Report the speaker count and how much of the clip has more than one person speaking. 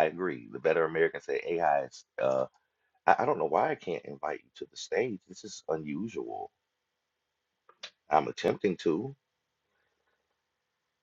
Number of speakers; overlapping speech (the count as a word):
one, no overlap